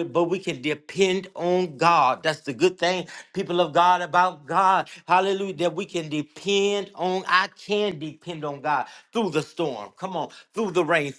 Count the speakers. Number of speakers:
1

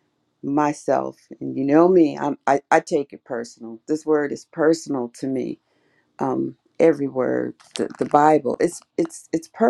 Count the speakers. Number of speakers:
1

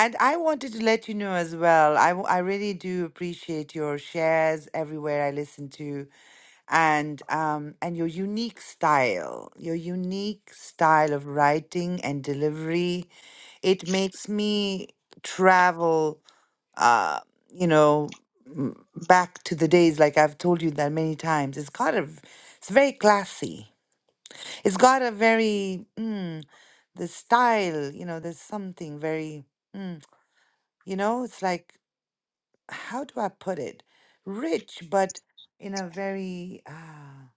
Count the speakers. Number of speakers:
1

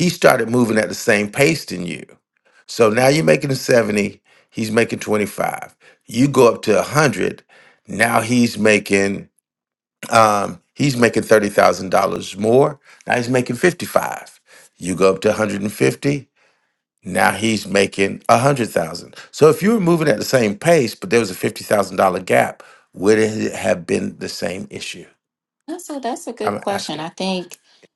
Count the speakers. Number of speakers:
2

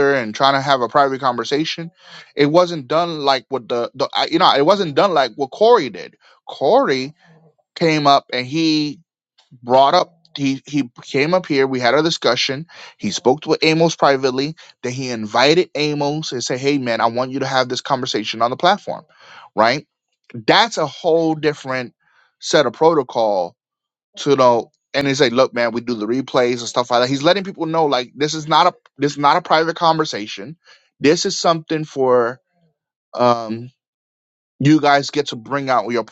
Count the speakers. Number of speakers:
1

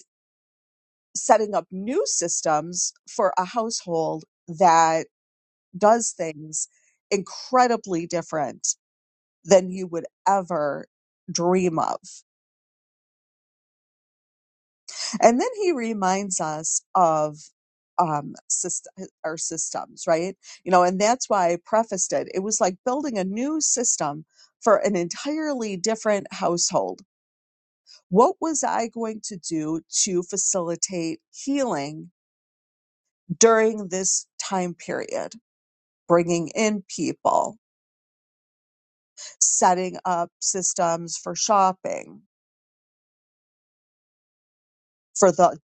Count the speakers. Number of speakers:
1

